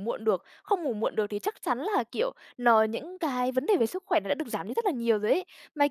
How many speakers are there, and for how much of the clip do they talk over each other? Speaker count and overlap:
1, no overlap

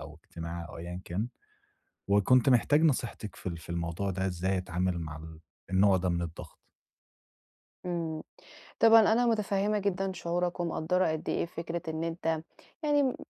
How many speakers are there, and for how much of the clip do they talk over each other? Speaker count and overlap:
2, no overlap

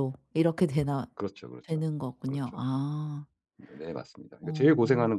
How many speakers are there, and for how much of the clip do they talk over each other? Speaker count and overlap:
2, about 20%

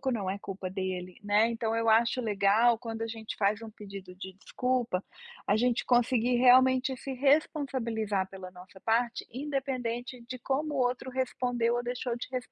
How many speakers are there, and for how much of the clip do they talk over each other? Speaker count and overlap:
1, no overlap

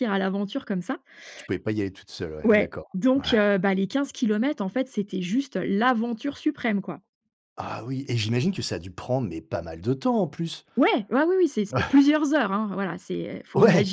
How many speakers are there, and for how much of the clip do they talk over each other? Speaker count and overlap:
2, about 9%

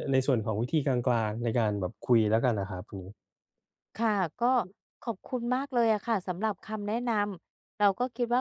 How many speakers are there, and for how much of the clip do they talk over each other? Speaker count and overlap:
2, no overlap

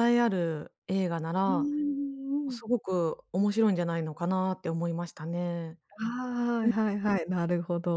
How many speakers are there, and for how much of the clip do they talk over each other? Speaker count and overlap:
2, about 5%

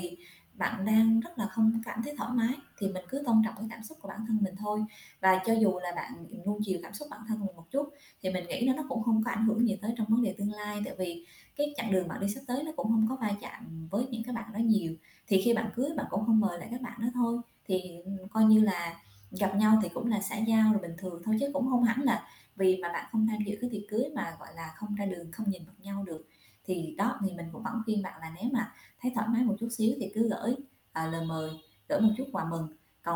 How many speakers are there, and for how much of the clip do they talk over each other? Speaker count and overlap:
1, no overlap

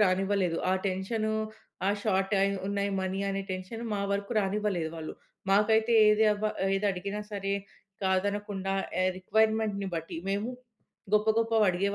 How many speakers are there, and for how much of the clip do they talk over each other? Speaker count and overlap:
1, no overlap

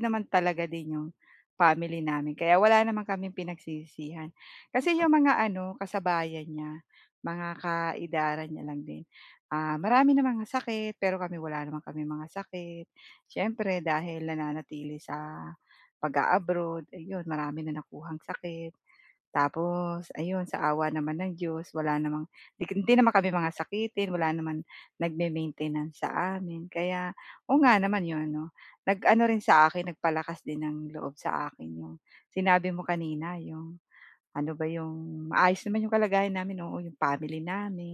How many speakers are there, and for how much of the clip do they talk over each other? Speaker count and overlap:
1, no overlap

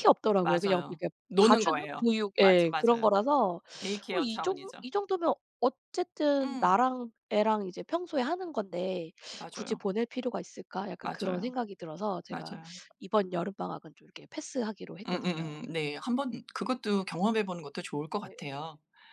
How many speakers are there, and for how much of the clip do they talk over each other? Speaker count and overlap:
2, about 23%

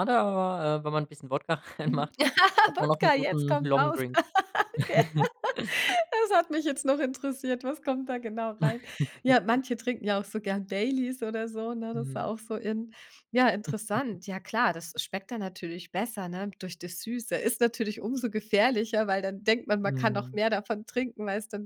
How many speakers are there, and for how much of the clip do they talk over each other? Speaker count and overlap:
2, about 10%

